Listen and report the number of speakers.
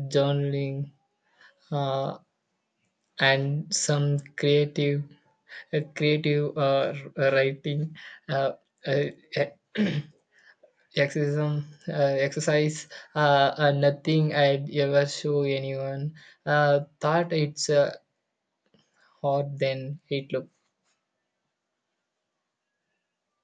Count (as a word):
one